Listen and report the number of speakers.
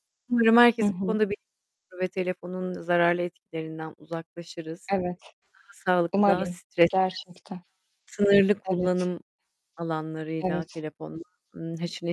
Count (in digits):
2